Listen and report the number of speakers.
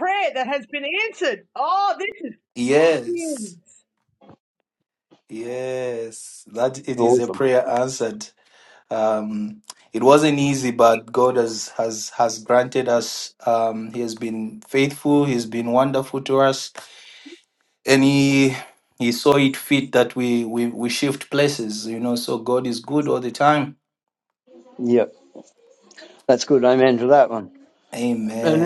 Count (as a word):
three